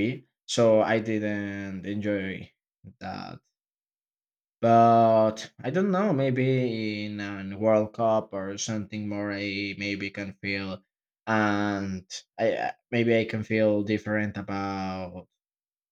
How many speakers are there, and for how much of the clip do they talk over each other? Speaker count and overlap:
one, no overlap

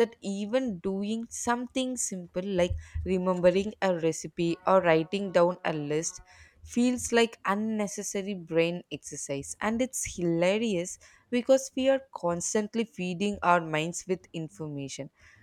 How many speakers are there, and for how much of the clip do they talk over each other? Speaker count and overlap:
one, no overlap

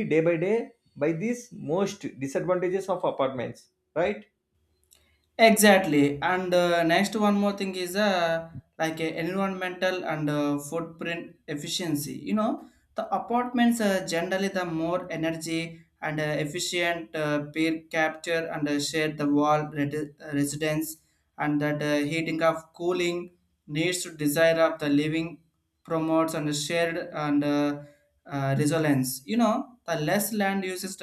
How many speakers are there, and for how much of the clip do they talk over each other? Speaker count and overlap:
two, no overlap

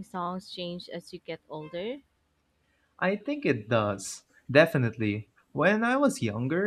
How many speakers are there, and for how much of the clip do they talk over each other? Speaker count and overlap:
two, no overlap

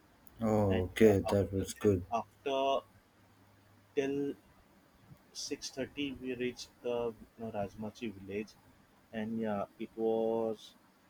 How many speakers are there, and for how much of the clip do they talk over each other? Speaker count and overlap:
two, about 8%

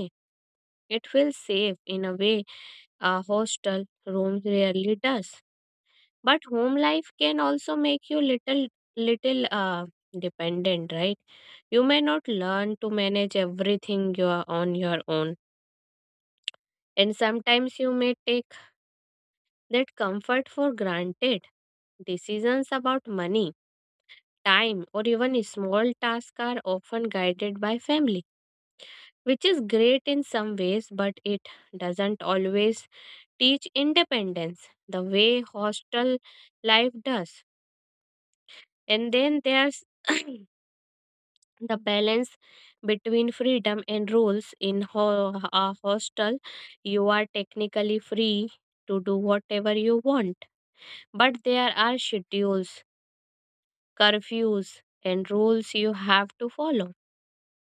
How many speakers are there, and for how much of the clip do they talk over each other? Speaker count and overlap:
one, no overlap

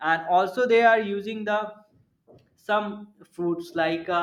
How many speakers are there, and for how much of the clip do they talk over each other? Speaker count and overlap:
one, no overlap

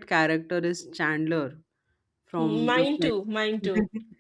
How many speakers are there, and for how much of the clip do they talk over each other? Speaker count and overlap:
two, about 13%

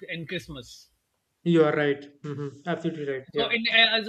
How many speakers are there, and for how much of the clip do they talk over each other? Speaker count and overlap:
two, about 5%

